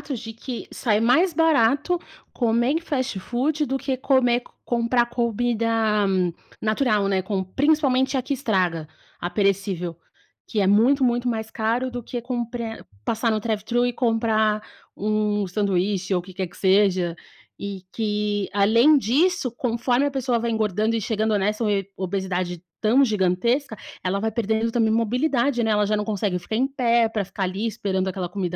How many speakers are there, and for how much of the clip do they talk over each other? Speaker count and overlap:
1, no overlap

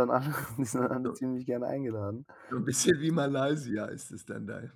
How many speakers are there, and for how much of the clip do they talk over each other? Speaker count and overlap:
2, no overlap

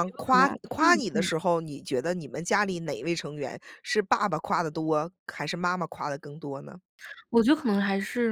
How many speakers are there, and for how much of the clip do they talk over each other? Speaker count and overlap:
2, about 16%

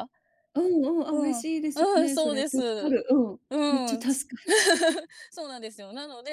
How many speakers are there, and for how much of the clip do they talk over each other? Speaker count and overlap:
2, about 29%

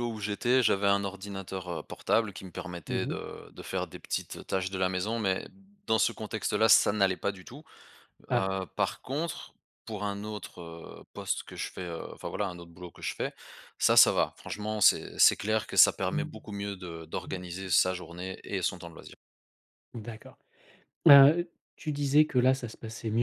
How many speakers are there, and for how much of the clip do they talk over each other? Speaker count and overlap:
2, about 2%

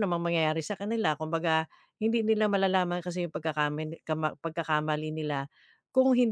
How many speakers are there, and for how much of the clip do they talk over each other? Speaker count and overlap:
1, no overlap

